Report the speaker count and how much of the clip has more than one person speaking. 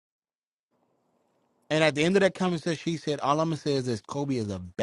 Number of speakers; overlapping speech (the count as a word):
one, no overlap